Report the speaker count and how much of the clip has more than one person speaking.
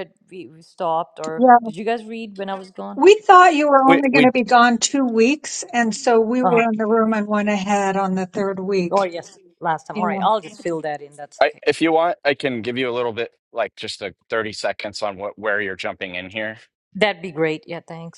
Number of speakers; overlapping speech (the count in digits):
3, about 9%